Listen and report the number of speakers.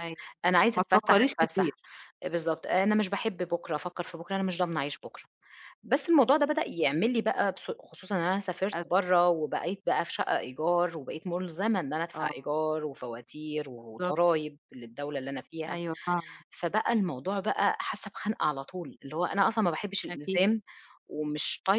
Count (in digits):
2